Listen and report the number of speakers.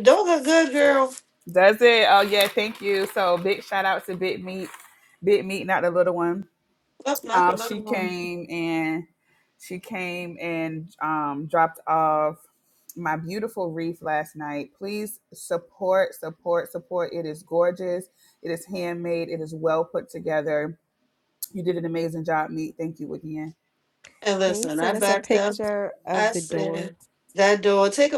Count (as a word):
three